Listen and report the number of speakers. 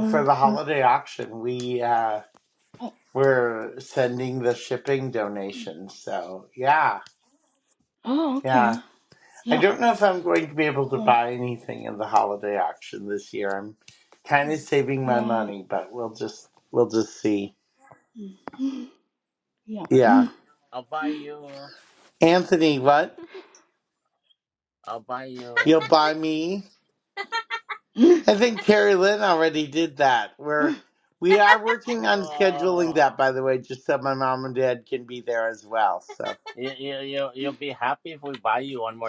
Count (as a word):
three